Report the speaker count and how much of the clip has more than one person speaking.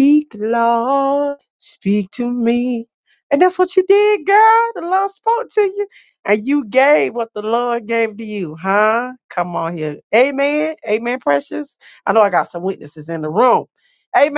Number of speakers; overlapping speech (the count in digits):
1, no overlap